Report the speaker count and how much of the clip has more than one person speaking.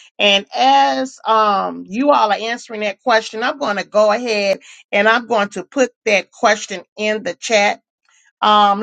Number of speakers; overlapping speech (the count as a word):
one, no overlap